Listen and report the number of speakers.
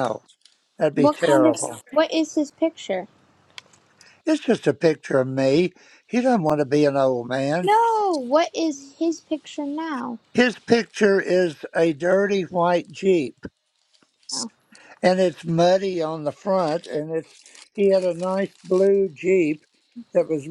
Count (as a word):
two